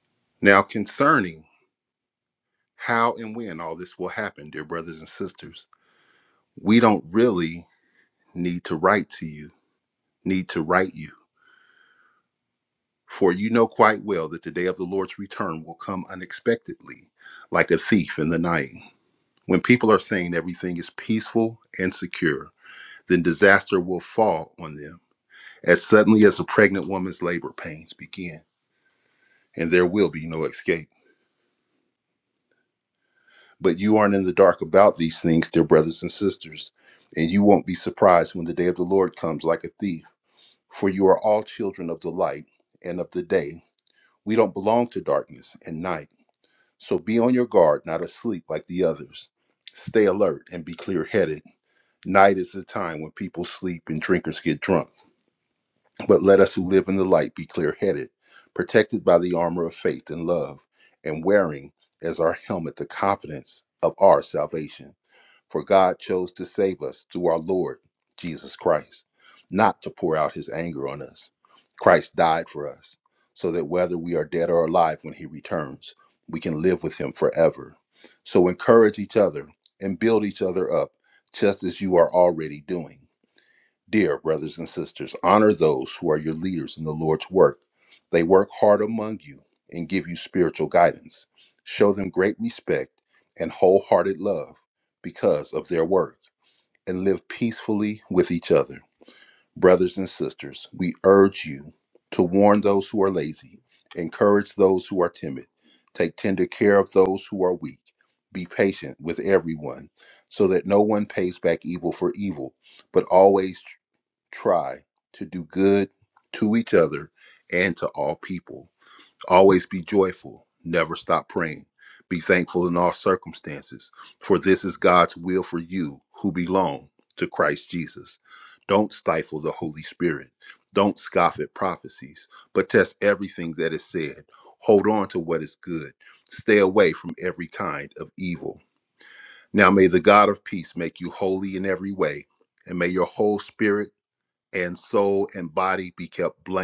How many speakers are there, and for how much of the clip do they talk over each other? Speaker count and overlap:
1, no overlap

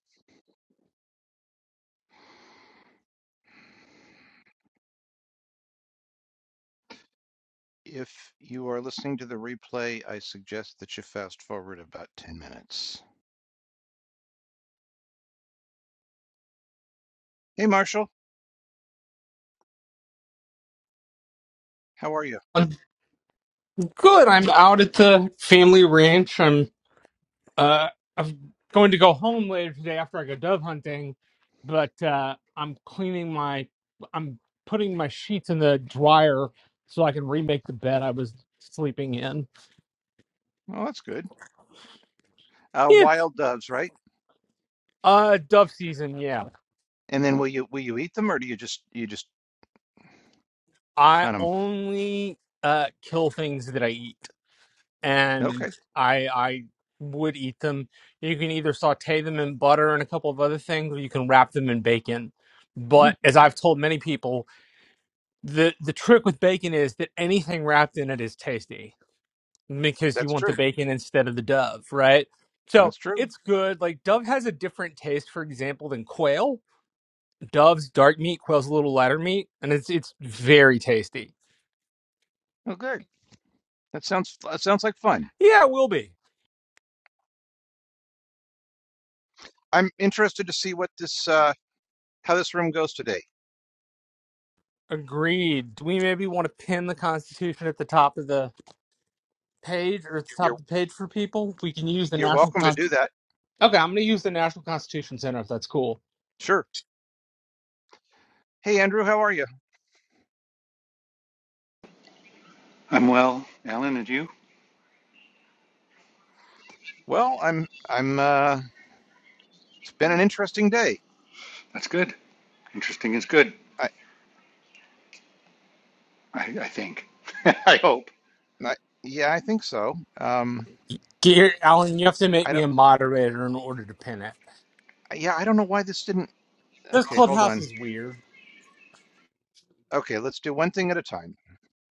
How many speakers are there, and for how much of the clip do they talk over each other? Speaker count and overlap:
3, about 2%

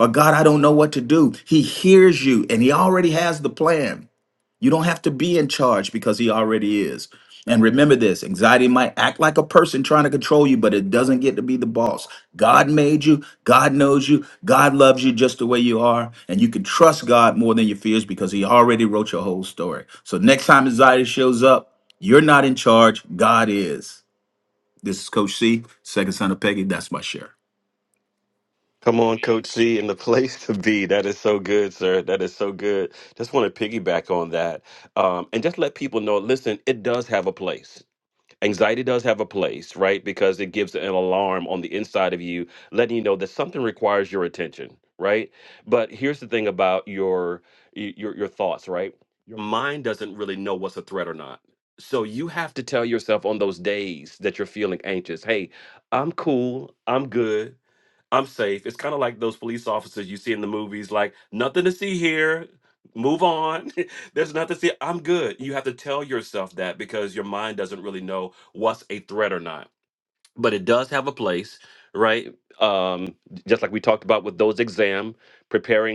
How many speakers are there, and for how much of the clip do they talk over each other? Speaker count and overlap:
2, no overlap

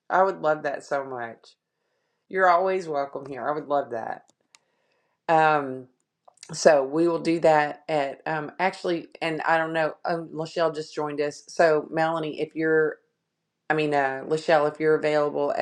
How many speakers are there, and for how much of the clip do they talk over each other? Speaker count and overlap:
1, no overlap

